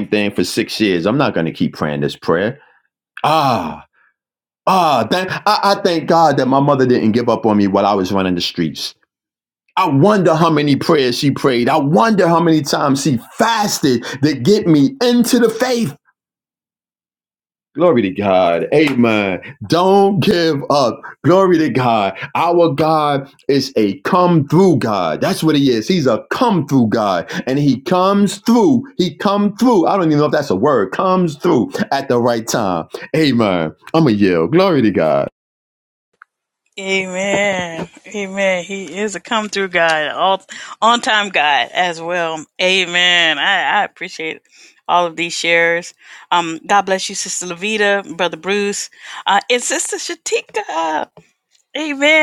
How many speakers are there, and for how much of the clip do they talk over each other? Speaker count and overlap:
two, no overlap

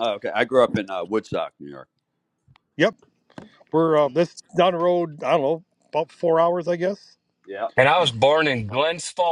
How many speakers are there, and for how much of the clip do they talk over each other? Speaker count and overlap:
three, no overlap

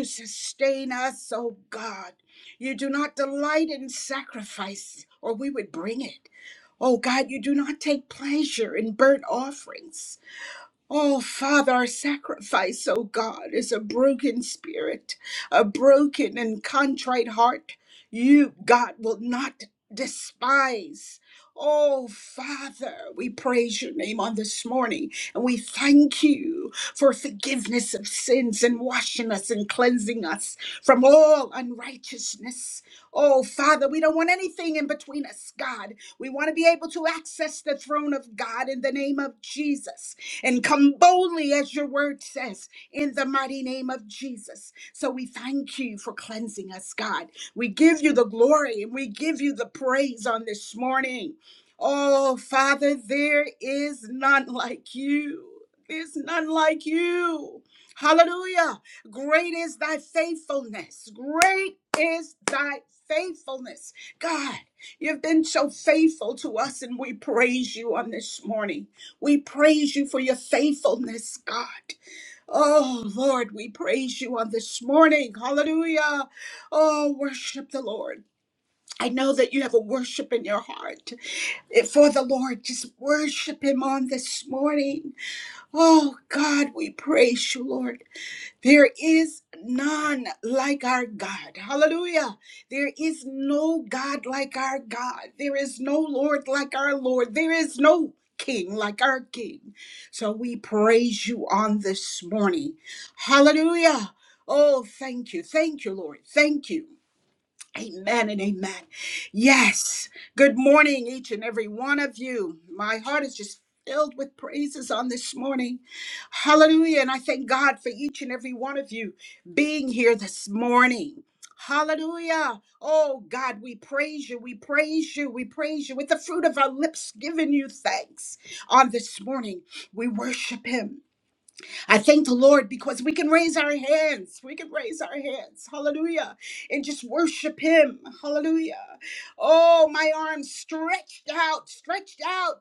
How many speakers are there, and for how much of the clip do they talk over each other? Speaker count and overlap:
one, no overlap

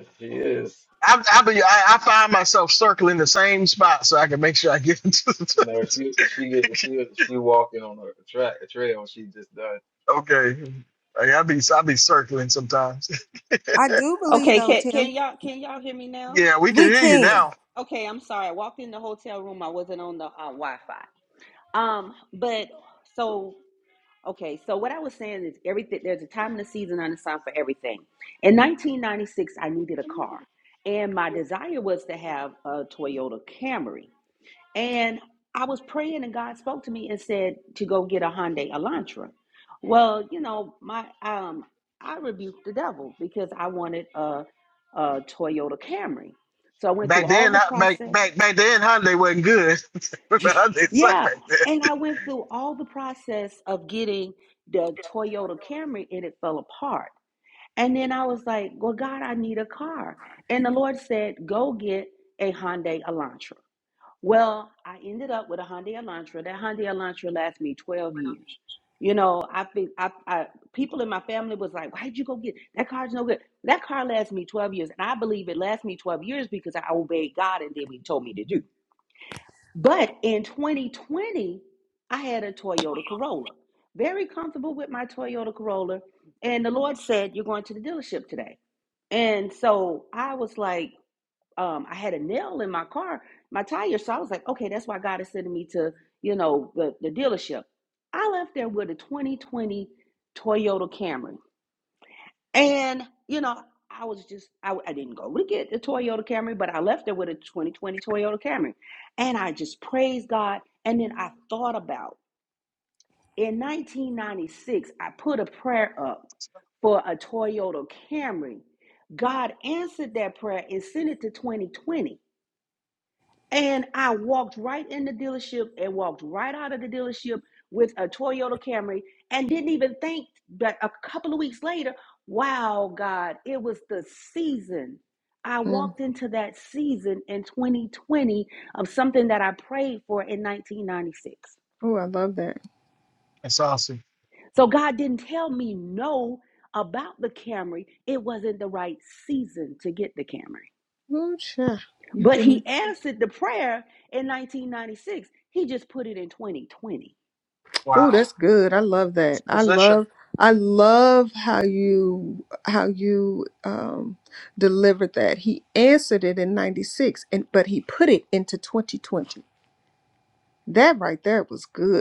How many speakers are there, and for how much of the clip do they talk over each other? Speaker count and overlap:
four, about 3%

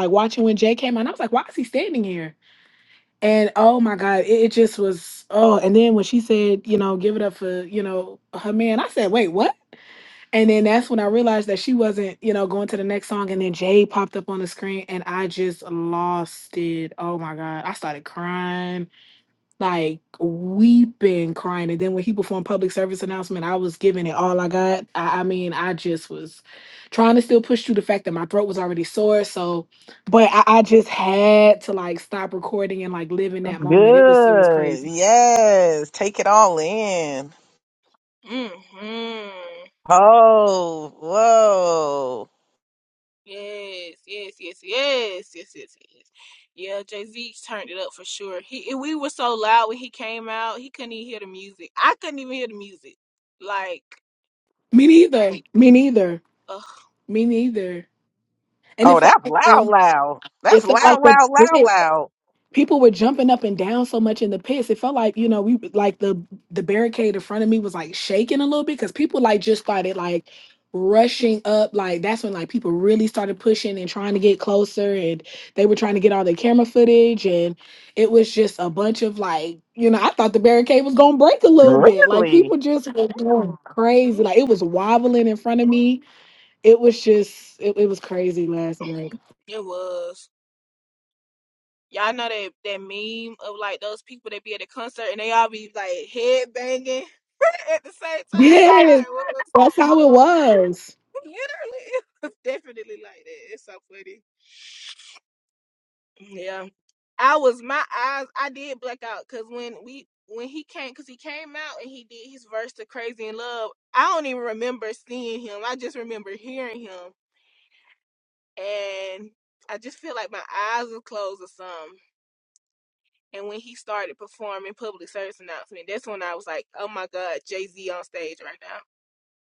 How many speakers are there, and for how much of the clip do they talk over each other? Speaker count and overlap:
three, about 4%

